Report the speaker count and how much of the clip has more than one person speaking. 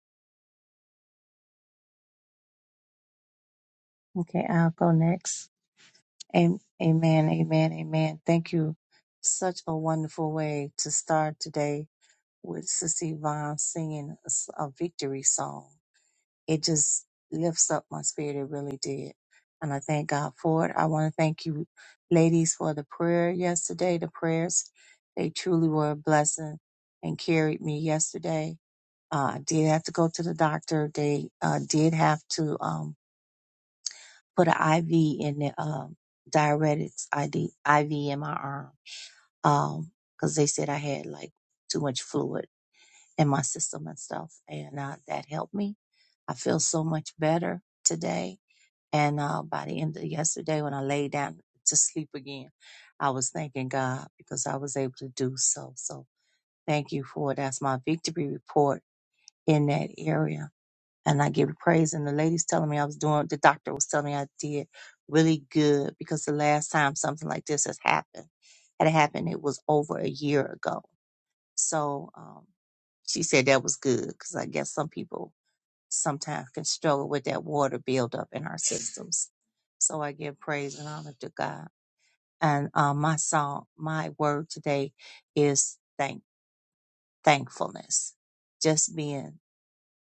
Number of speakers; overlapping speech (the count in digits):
1, no overlap